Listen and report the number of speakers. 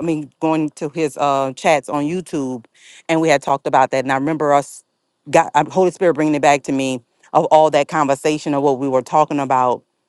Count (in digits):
1